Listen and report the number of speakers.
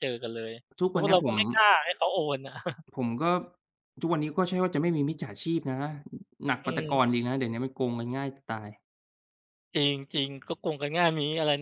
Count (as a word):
two